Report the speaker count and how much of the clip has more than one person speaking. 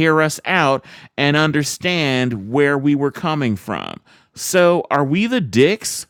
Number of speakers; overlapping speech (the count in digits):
1, no overlap